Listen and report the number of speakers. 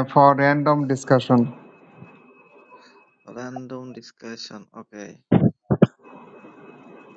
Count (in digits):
2